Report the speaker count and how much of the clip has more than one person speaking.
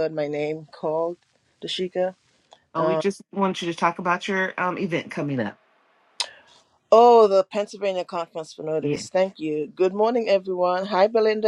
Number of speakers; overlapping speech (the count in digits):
2, about 4%